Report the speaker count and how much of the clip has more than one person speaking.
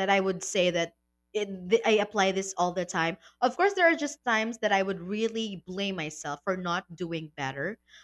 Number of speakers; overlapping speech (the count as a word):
one, no overlap